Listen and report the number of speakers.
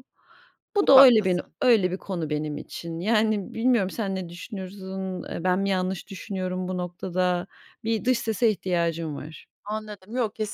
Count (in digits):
2